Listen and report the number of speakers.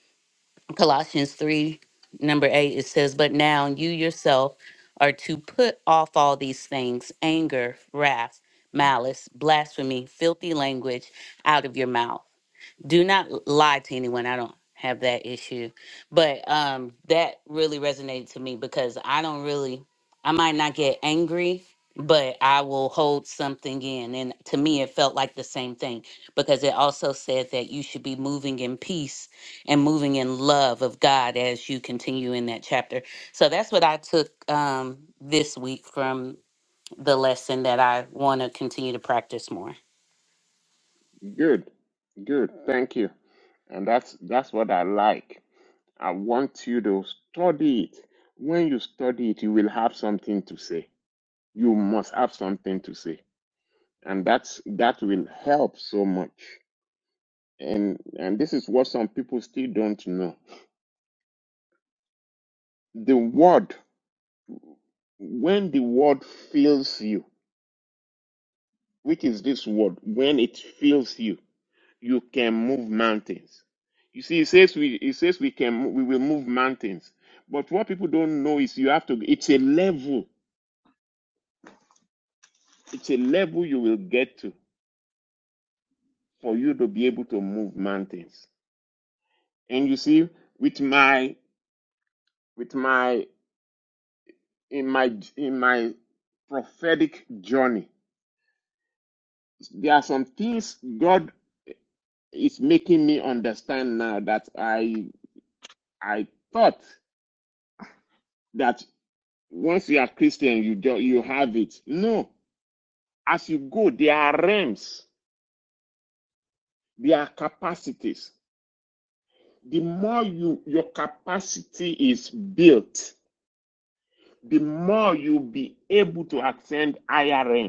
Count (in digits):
2